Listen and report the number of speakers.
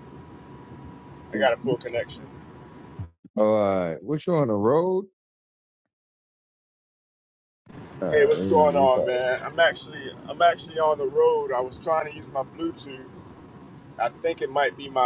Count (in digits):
2